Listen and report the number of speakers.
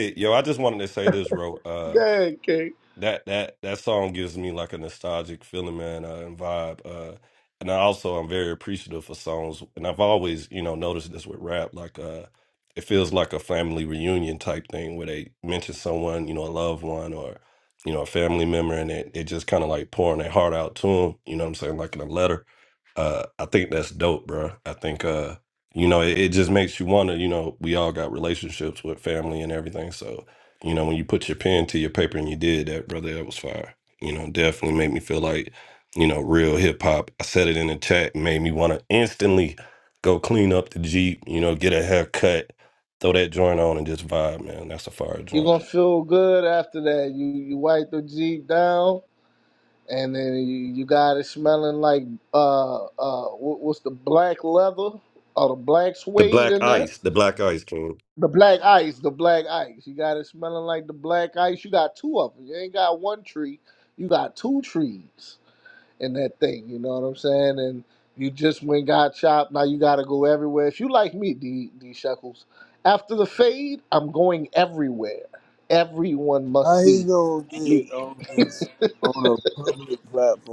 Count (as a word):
three